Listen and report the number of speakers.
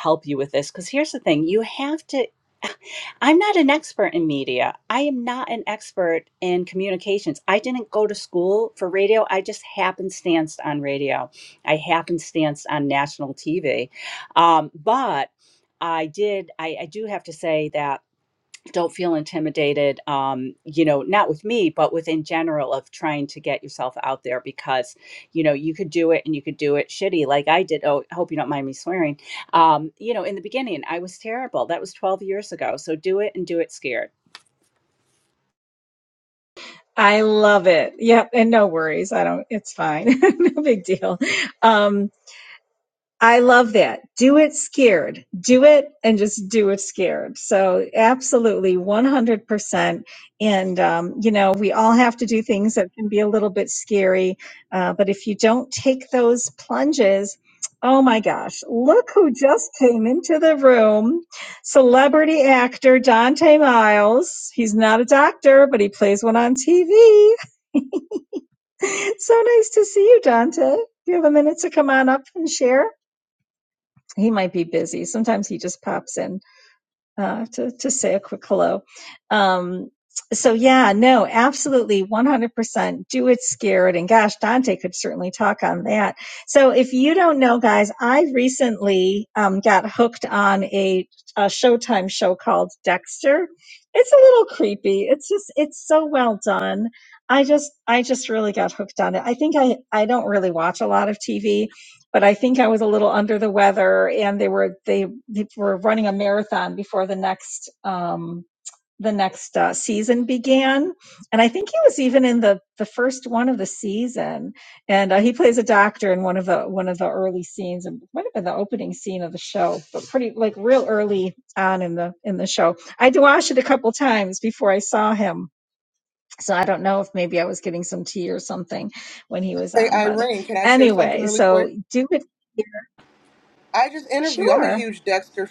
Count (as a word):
three